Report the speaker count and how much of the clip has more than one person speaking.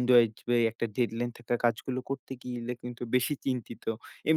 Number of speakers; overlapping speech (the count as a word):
one, no overlap